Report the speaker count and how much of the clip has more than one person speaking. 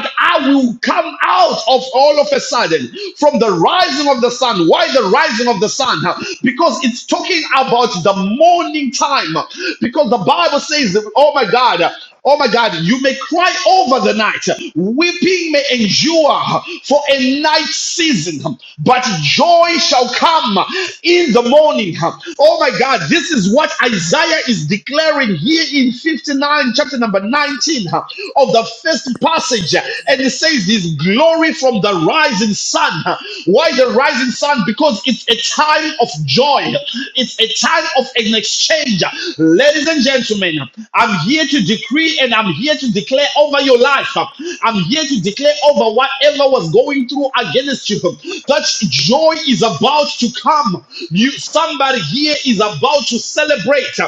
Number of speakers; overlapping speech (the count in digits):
1, no overlap